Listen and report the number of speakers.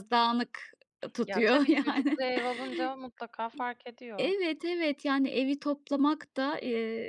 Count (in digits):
2